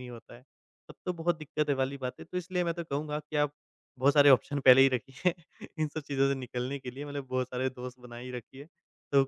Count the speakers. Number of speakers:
1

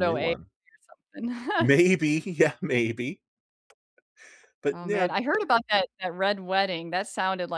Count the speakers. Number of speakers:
2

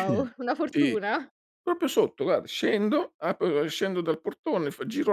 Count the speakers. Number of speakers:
2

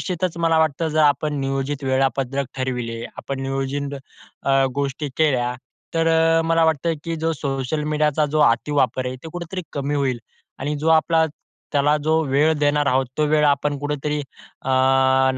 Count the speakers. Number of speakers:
1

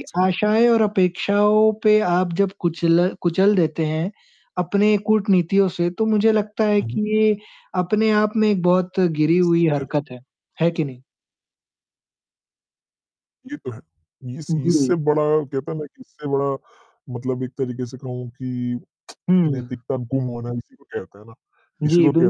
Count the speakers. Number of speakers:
2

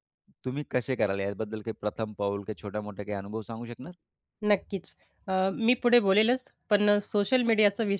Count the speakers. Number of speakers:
2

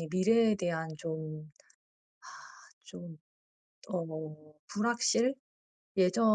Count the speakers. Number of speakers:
1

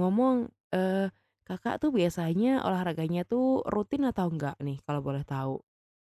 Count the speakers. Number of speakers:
1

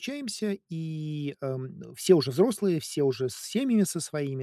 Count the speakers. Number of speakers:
1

